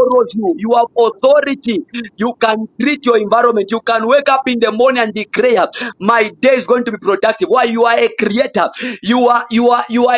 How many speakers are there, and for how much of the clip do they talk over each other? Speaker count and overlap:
1, no overlap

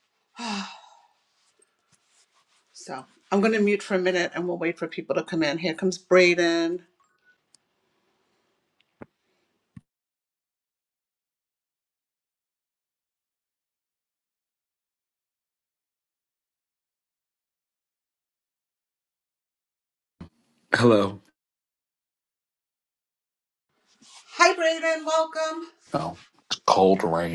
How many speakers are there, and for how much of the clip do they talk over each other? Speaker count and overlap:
2, no overlap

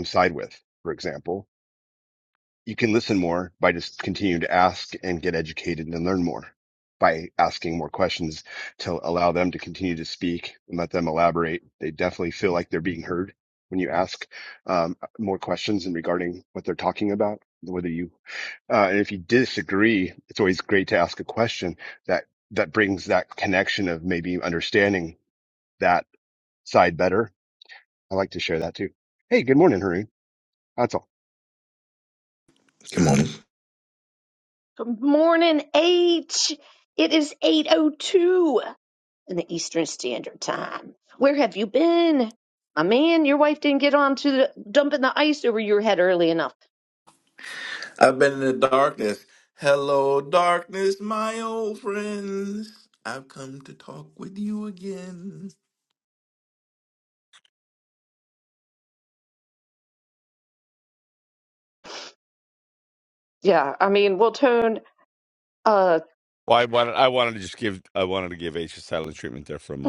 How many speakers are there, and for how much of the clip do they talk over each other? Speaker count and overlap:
4, no overlap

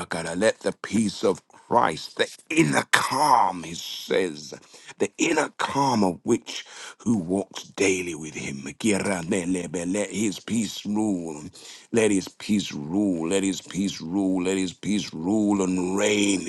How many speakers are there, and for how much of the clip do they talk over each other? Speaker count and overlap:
1, no overlap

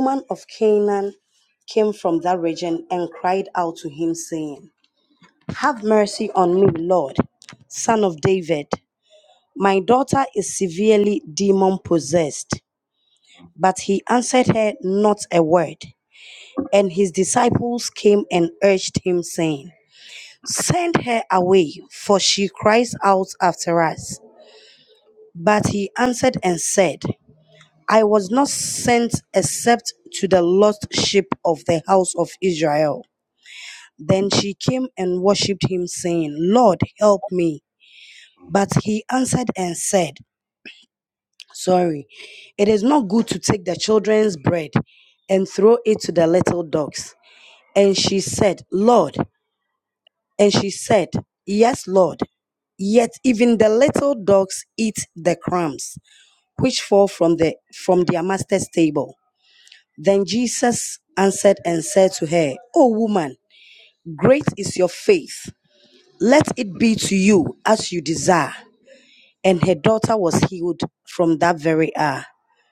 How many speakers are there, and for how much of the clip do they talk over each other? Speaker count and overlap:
1, no overlap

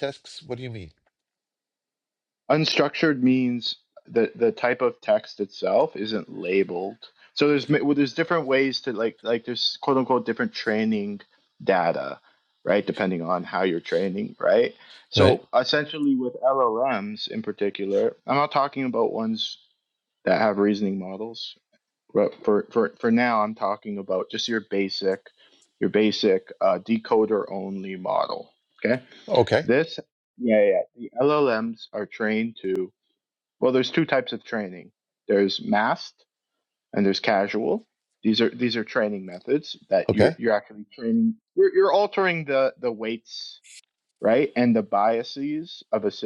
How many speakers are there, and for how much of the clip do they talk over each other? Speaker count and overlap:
2, about 1%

